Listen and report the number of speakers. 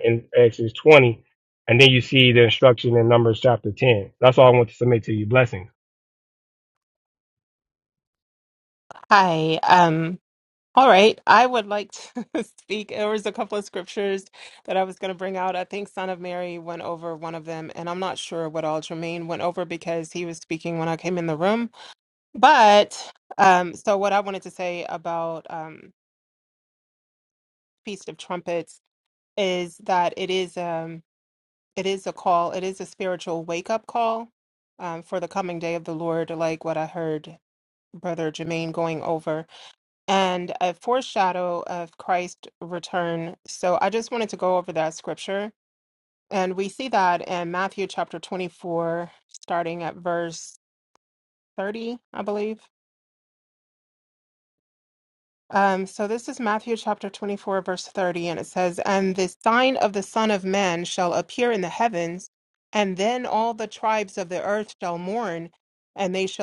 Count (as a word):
two